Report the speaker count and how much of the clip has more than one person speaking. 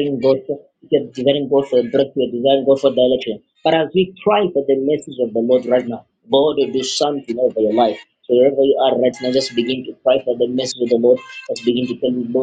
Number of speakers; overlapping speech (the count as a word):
one, no overlap